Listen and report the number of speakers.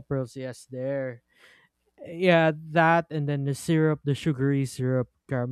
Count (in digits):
1